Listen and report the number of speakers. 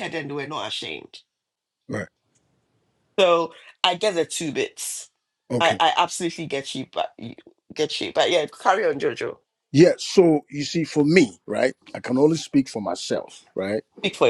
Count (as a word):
two